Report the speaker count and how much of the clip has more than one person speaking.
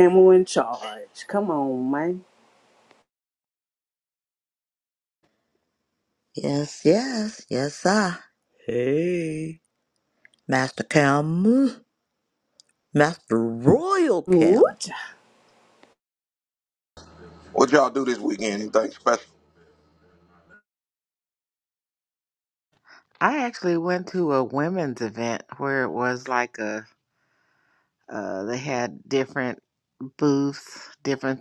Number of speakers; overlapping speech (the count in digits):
4, about 1%